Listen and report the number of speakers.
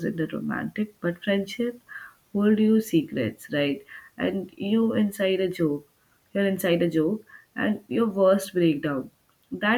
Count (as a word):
one